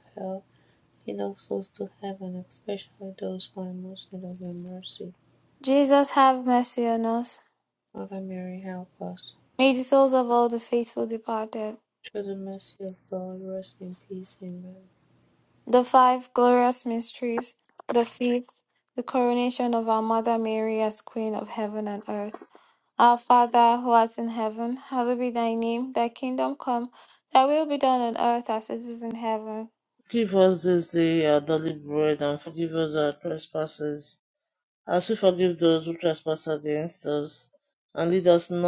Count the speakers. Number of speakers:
3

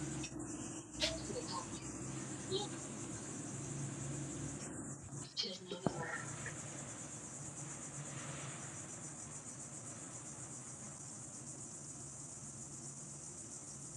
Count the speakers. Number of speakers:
0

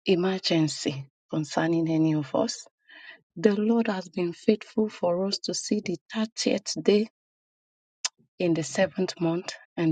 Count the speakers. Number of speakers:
1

